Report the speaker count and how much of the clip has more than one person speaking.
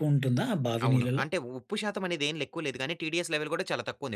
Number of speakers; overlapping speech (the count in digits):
2, about 11%